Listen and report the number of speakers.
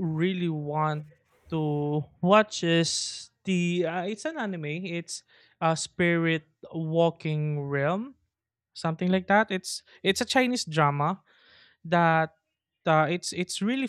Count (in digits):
1